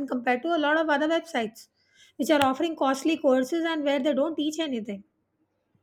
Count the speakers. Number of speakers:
one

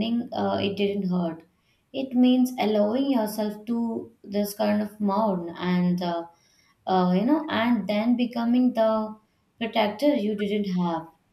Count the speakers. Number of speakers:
one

